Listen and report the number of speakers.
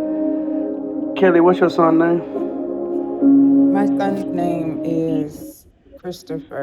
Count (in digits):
2